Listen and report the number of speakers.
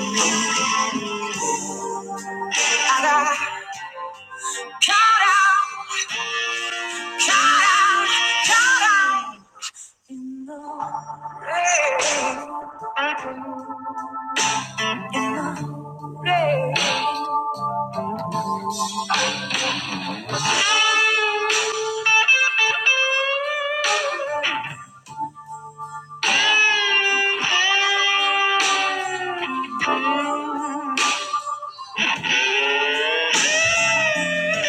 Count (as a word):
one